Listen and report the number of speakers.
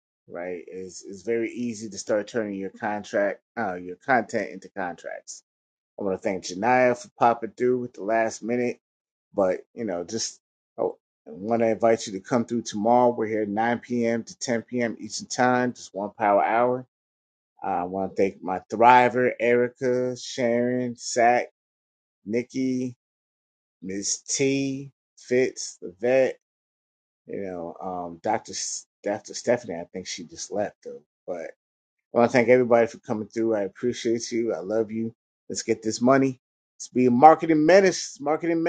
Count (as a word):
one